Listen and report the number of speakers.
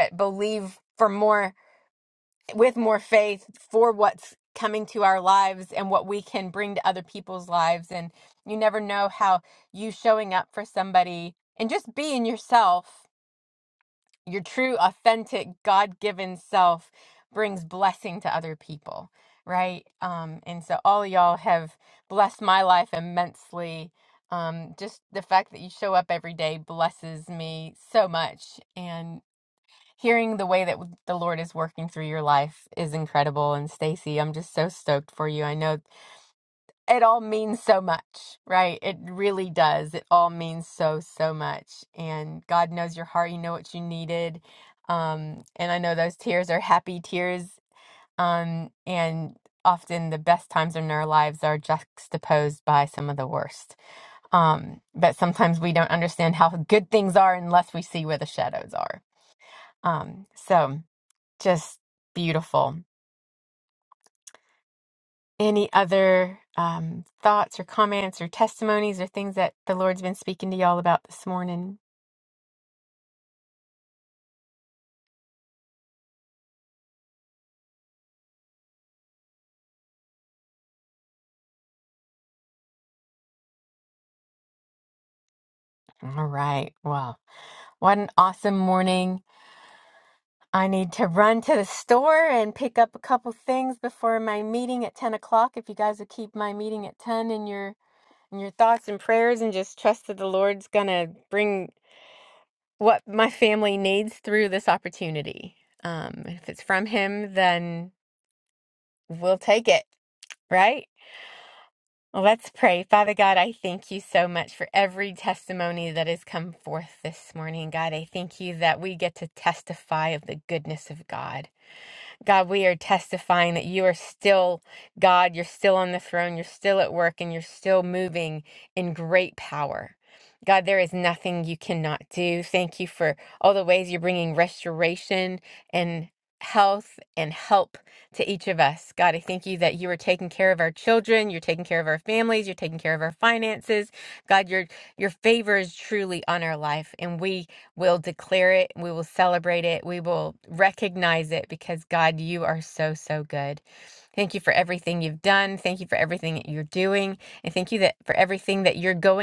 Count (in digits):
1